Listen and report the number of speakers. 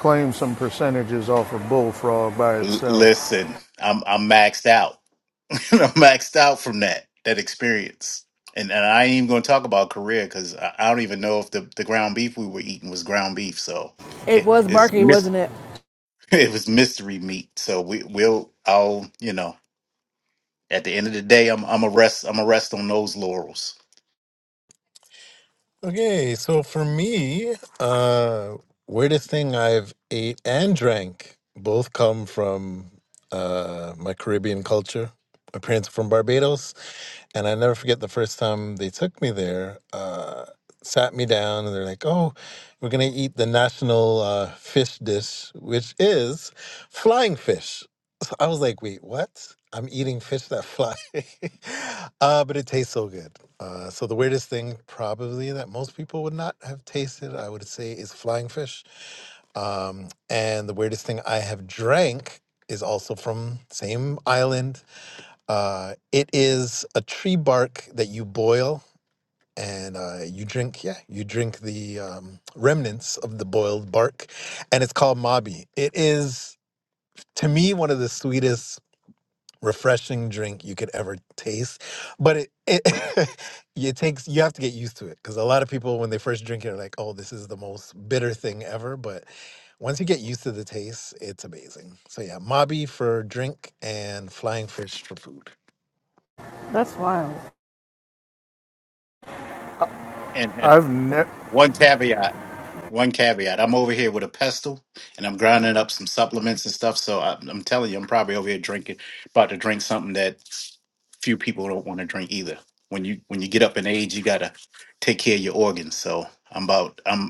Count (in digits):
4